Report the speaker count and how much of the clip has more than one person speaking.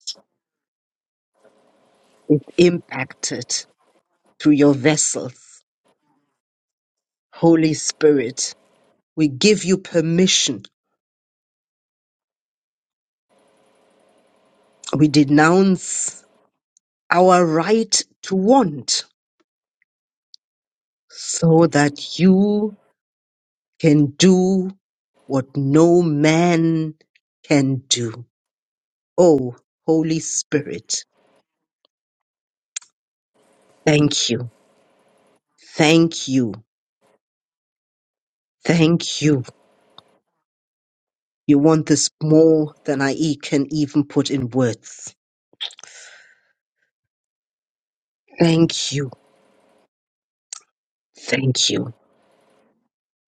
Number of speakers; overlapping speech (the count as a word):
one, no overlap